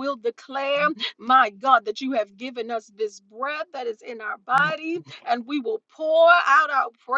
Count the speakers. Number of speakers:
one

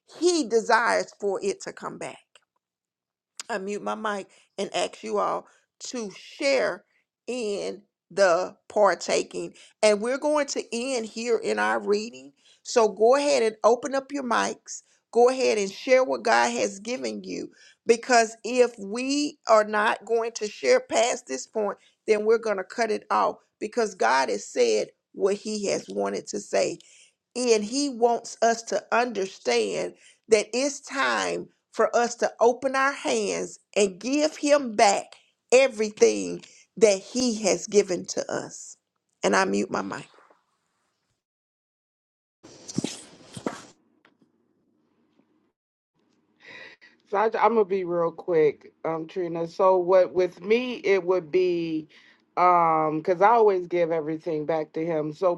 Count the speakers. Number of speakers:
two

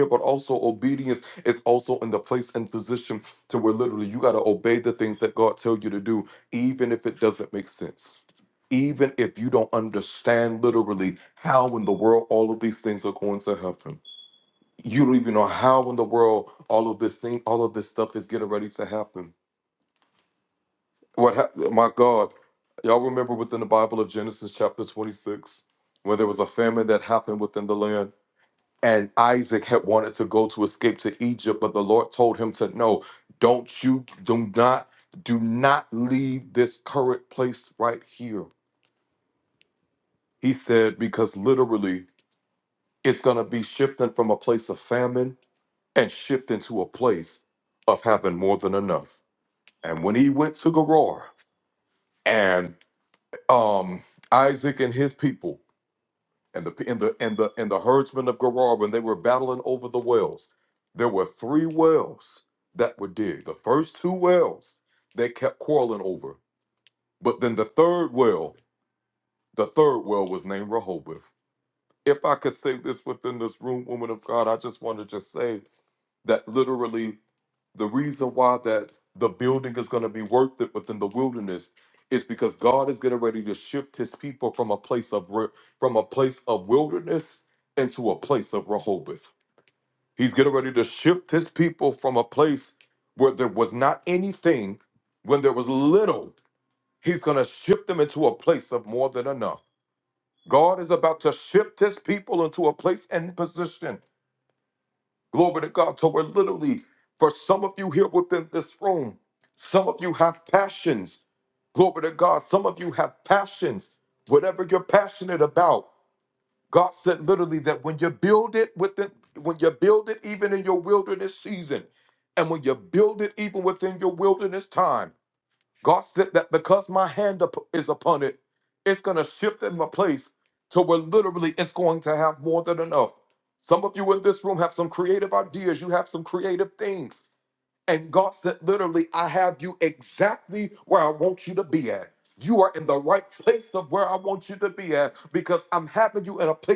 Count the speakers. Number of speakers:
one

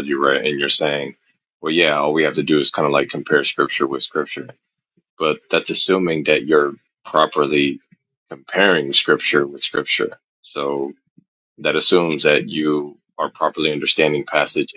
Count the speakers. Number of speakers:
one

